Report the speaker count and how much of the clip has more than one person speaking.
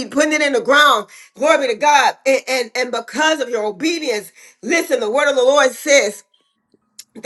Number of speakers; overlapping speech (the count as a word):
one, no overlap